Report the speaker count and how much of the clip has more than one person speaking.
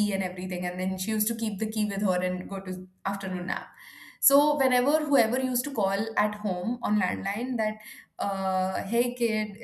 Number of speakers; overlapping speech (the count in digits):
1, no overlap